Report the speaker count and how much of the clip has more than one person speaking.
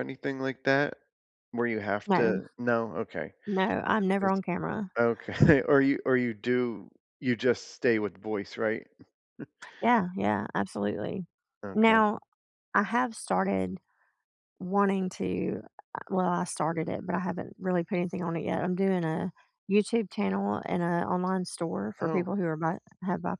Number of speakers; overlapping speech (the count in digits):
2, about 4%